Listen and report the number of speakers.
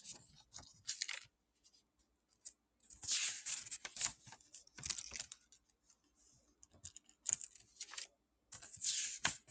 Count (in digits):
0